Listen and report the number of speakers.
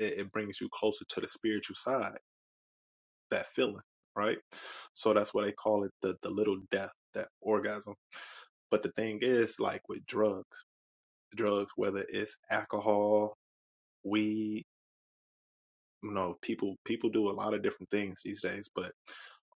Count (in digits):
1